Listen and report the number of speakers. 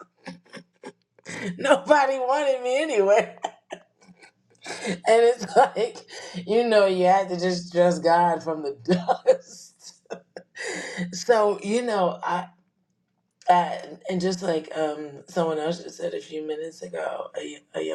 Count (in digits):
1